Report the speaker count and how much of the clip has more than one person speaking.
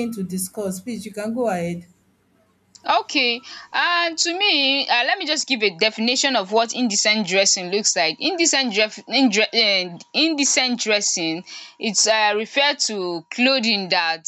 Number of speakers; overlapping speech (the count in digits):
2, no overlap